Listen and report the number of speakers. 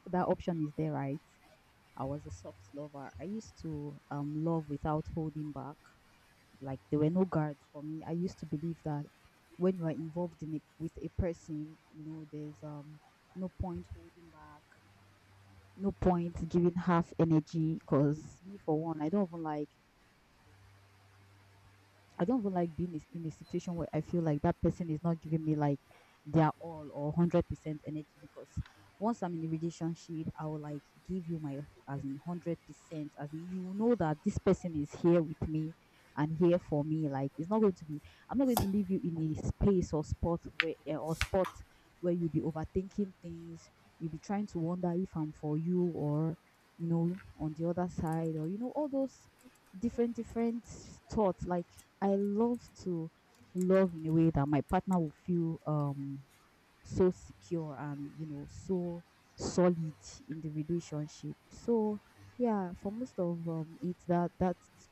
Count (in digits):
1